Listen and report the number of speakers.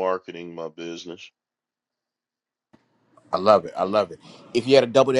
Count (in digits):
2